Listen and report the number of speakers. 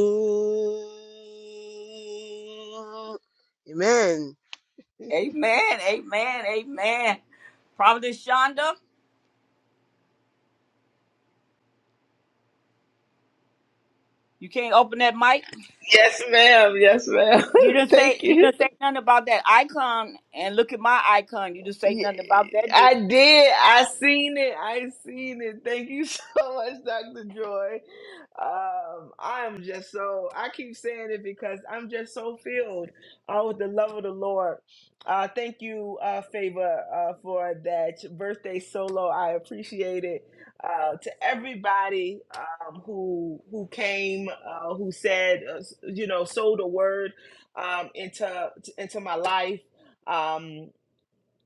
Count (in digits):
3